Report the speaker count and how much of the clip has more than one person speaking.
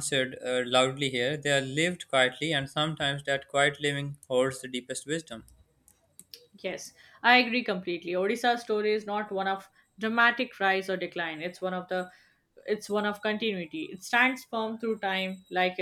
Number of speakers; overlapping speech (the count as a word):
two, no overlap